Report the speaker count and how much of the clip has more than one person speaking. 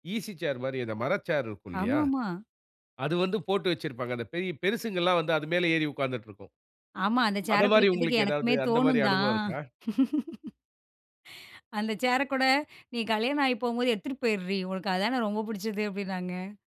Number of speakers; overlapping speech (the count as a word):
two, about 13%